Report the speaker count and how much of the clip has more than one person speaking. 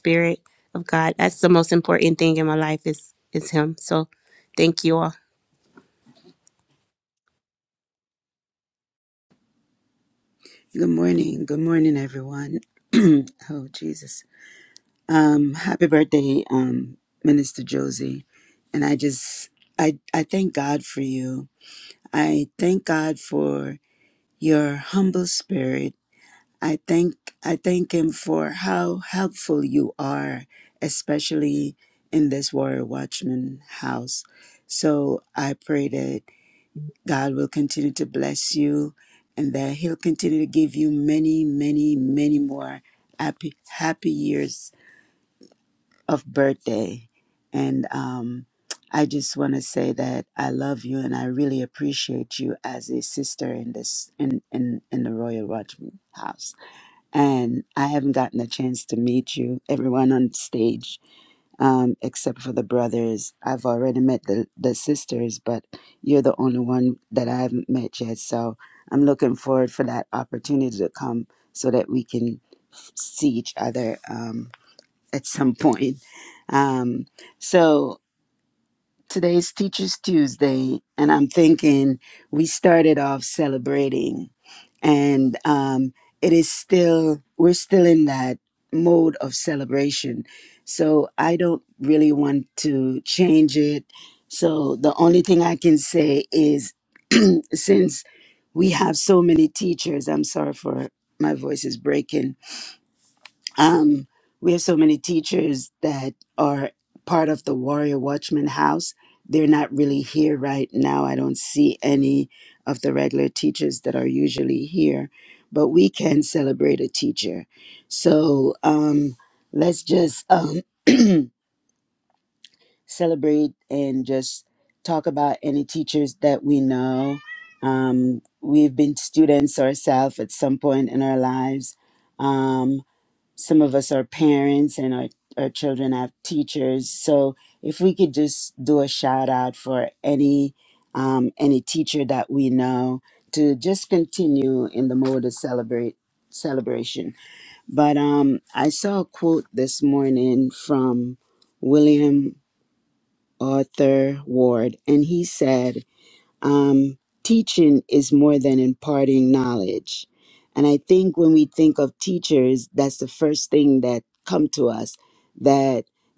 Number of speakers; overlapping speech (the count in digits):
2, no overlap